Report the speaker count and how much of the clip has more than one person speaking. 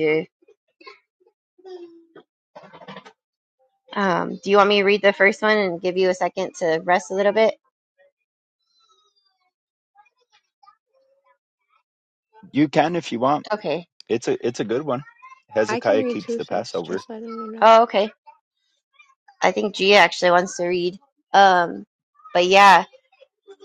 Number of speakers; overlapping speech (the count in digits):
3, about 6%